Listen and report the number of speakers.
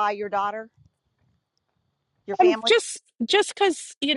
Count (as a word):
two